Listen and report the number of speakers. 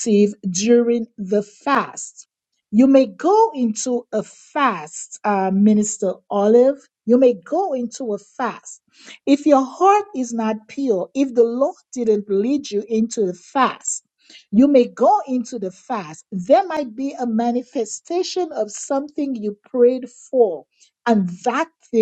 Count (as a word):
one